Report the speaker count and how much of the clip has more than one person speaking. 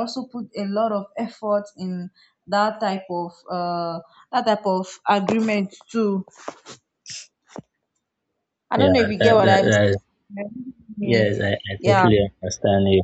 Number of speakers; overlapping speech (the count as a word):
two, about 12%